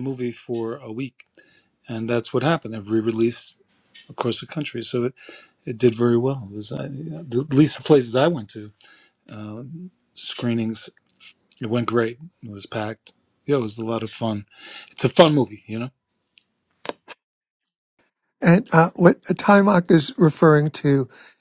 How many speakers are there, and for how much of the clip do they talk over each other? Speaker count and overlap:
two, no overlap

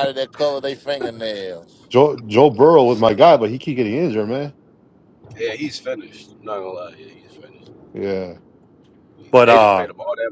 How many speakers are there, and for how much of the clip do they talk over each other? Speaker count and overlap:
three, about 5%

